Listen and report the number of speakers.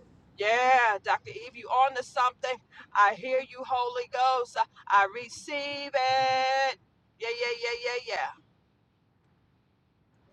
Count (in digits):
1